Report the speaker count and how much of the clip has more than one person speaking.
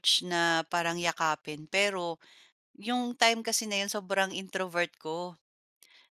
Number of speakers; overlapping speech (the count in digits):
1, no overlap